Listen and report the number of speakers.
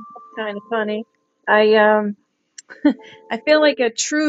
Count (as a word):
one